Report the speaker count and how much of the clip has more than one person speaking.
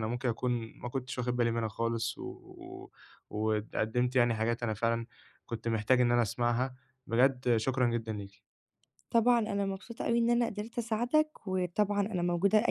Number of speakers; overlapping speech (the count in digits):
2, no overlap